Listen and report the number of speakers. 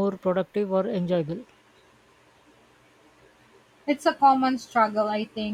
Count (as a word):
two